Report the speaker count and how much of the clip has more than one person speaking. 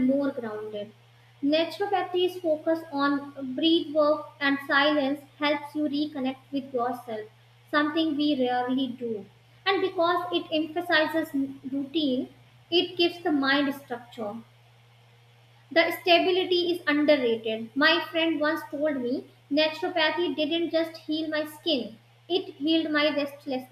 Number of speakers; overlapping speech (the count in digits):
1, no overlap